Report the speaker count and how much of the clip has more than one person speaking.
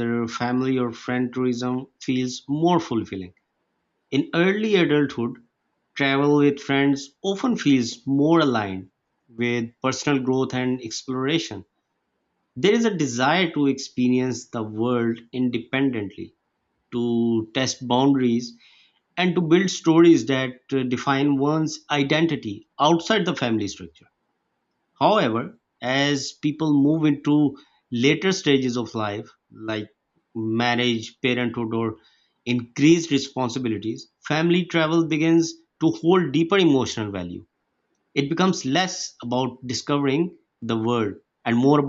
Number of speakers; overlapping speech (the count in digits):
1, no overlap